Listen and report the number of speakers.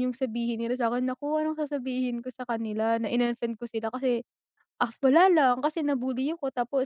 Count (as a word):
one